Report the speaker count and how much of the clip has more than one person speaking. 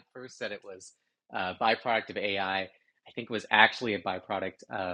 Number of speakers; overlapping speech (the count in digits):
1, no overlap